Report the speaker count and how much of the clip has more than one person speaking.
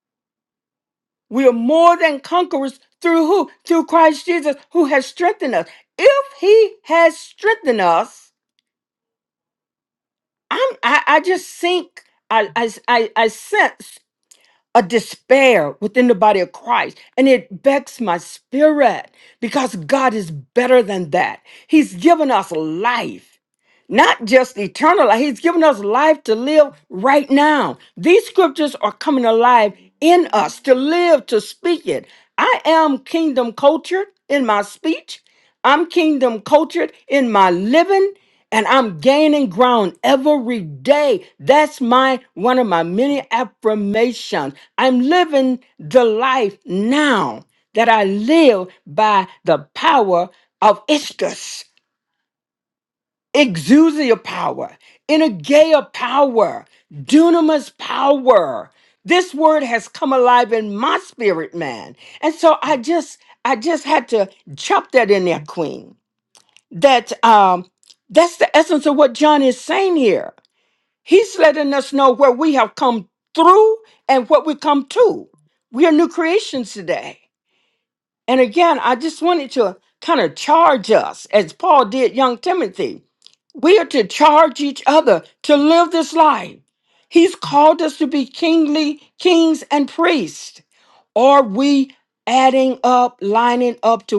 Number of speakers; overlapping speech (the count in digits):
1, no overlap